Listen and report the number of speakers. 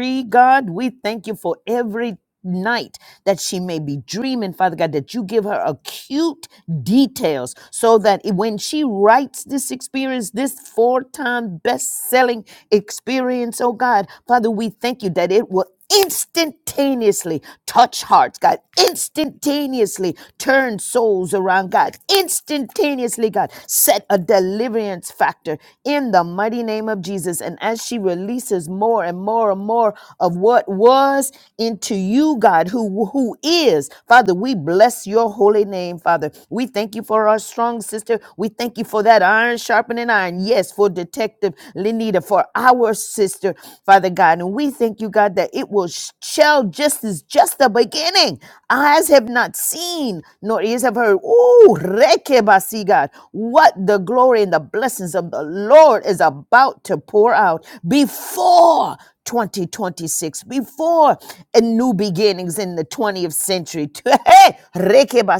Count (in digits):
1